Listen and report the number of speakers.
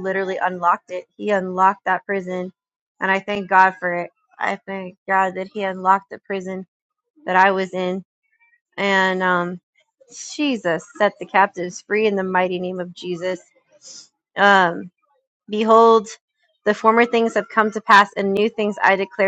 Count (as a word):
one